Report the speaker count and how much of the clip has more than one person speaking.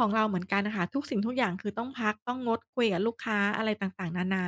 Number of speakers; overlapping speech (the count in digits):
1, no overlap